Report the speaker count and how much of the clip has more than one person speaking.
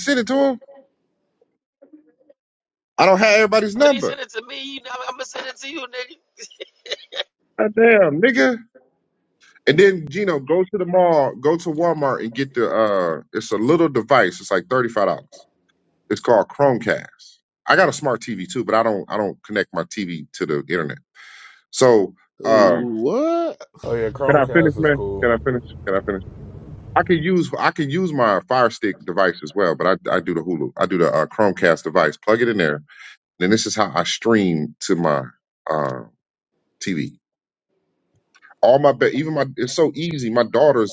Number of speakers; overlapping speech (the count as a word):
four, about 5%